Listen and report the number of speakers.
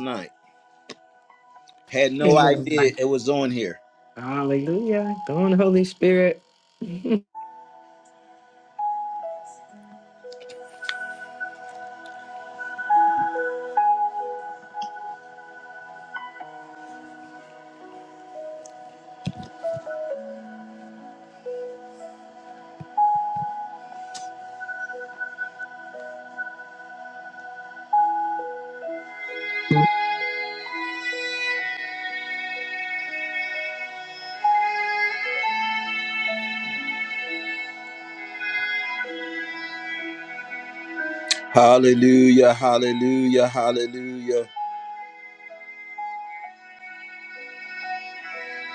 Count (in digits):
2